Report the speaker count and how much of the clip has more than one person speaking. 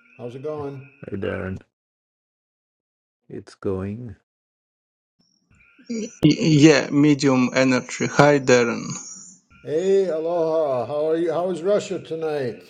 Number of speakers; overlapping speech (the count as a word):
three, no overlap